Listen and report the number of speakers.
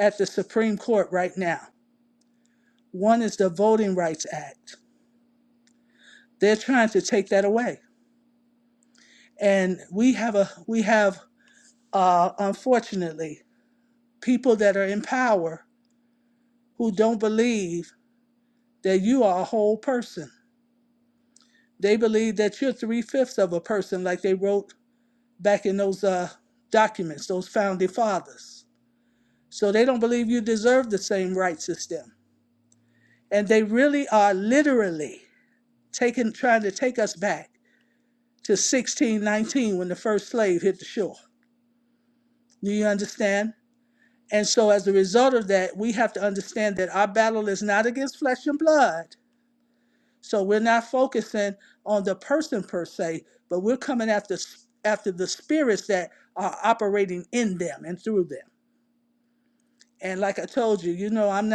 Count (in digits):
1